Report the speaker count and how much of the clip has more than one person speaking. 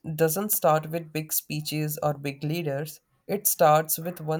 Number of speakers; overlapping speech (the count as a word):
one, no overlap